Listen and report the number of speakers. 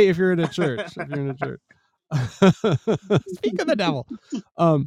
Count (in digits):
1